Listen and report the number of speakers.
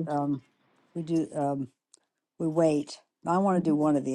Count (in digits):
1